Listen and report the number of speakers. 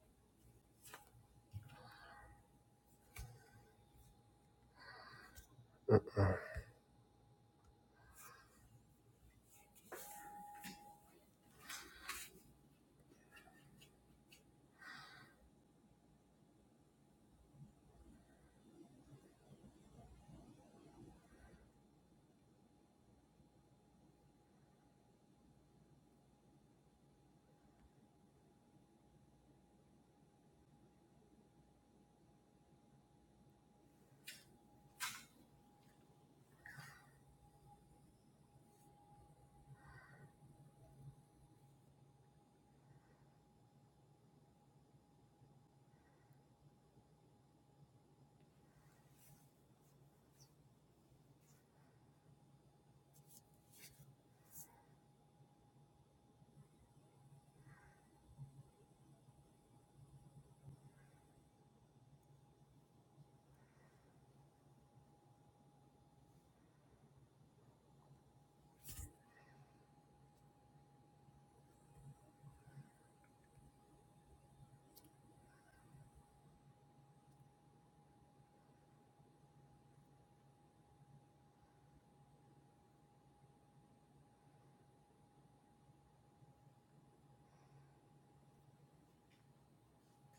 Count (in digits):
0